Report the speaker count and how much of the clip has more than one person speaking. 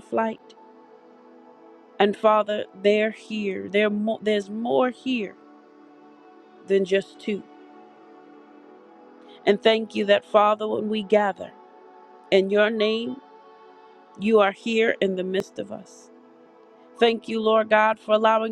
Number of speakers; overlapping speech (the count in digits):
1, no overlap